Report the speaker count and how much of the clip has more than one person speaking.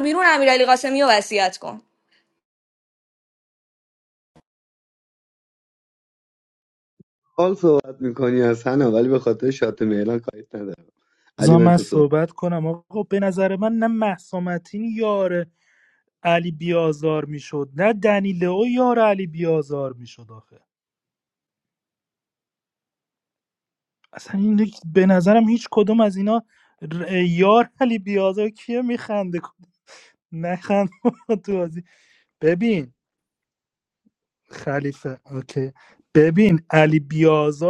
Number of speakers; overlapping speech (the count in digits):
3, about 2%